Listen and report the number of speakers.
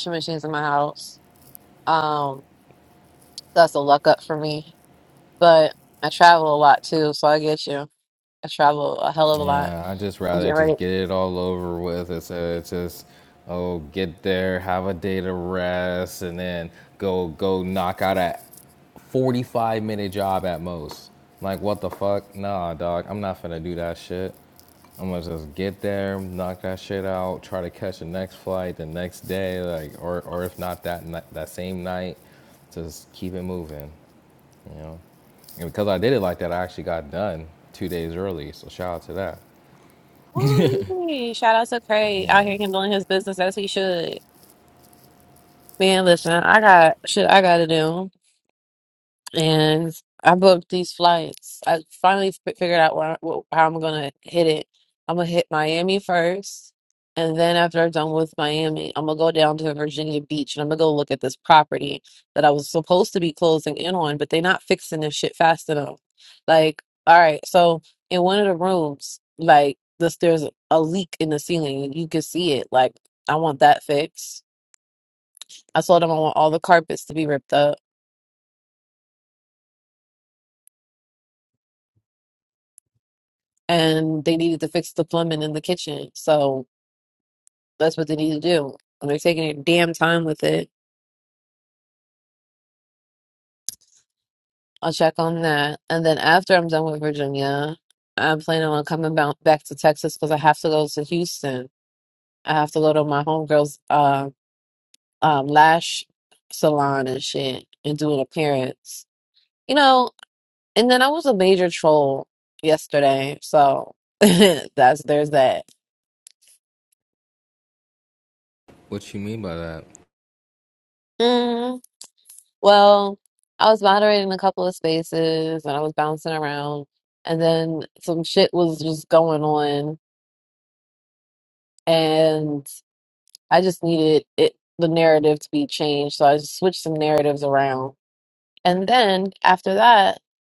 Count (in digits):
2